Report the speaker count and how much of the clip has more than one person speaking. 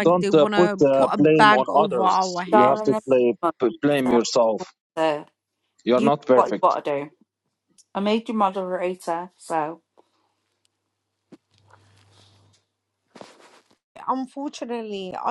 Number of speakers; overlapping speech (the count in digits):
3, about 24%